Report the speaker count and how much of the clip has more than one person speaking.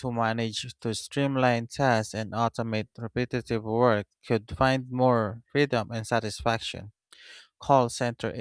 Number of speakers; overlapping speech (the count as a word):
one, no overlap